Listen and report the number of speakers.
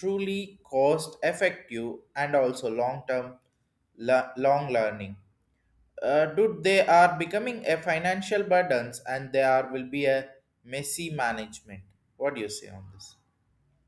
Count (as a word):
one